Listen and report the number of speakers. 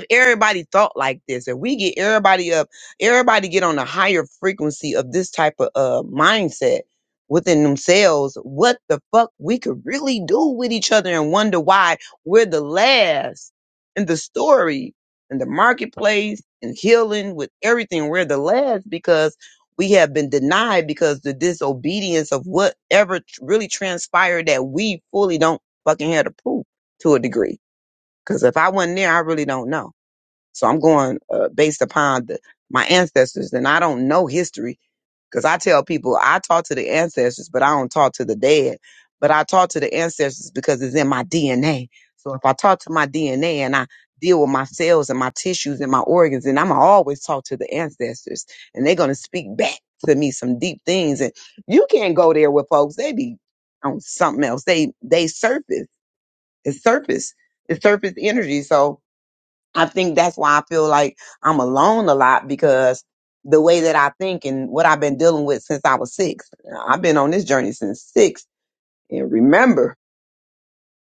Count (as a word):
one